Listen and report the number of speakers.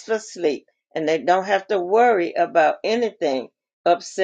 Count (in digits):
1